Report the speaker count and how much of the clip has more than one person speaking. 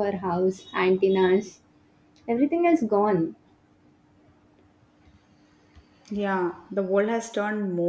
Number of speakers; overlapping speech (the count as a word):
two, no overlap